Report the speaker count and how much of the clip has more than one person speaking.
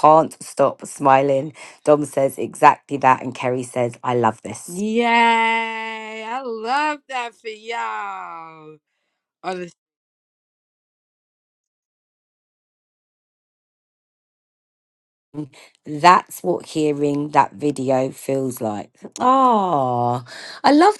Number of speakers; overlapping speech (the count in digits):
2, no overlap